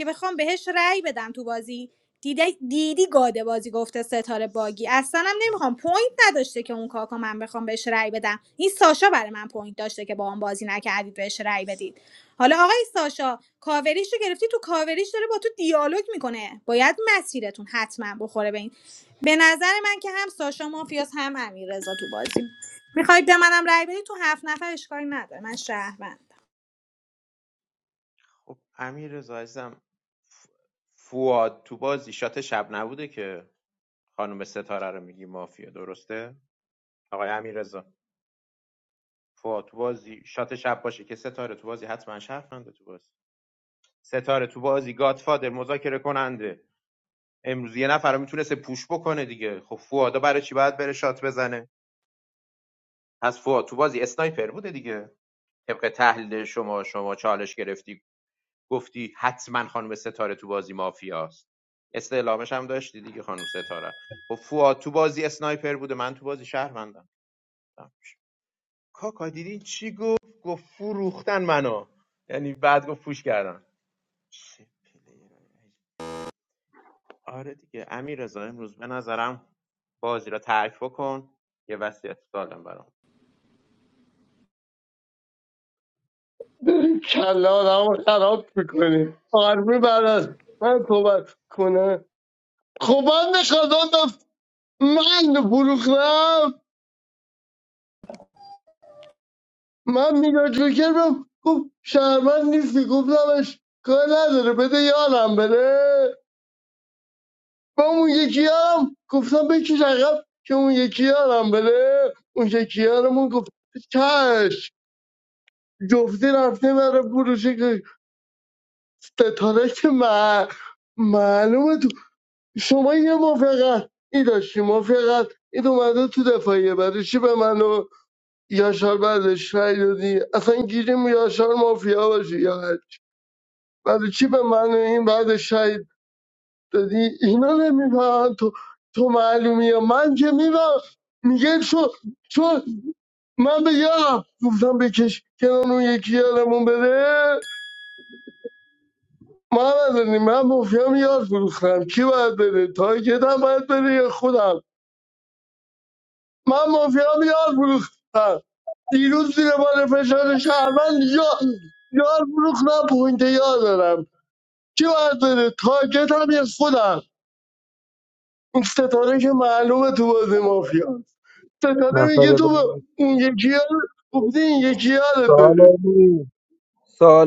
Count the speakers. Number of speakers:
4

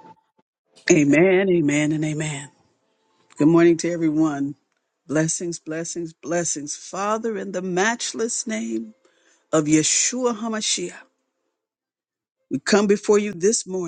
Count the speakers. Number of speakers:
1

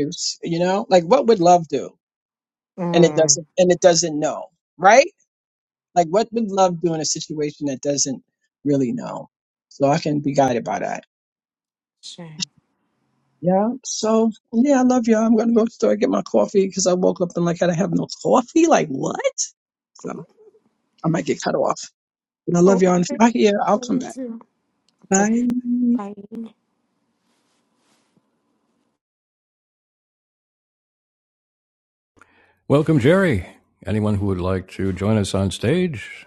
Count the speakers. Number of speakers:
3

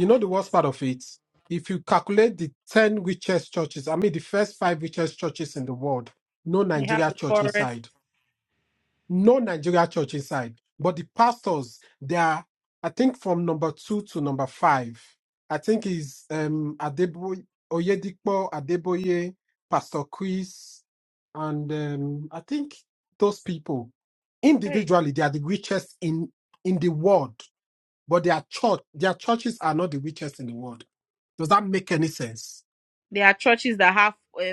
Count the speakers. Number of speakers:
2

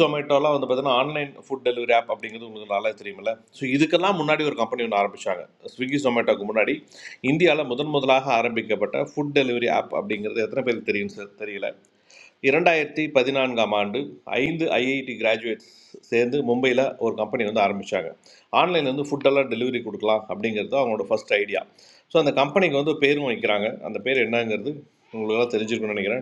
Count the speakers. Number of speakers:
1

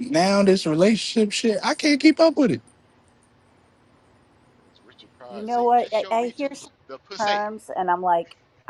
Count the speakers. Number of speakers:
3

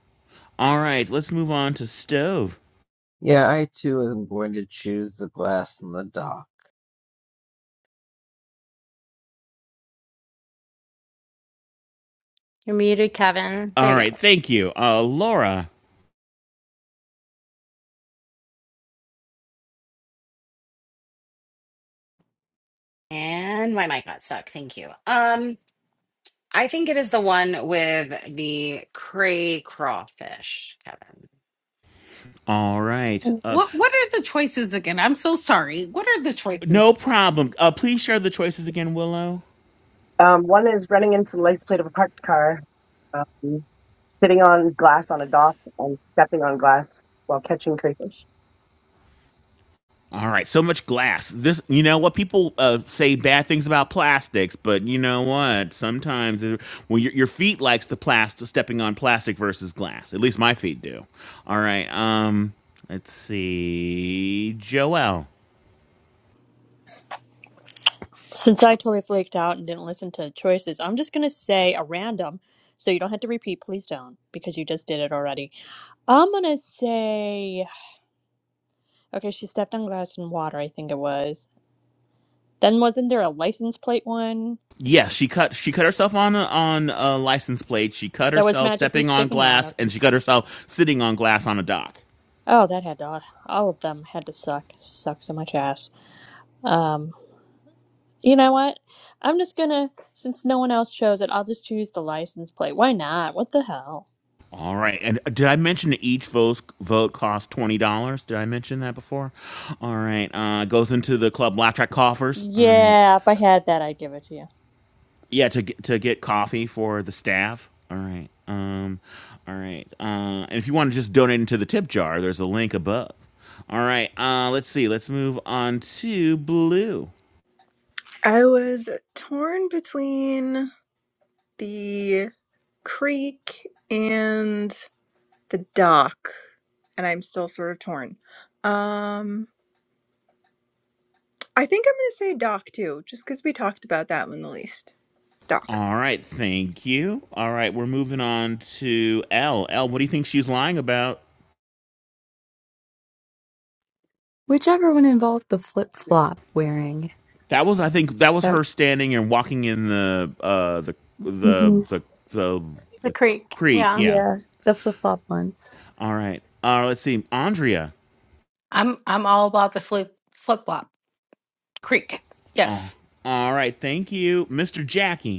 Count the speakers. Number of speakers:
9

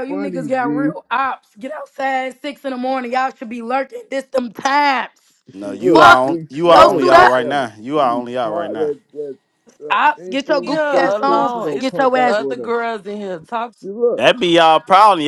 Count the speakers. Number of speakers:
4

